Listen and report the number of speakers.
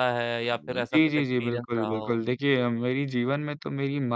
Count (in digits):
2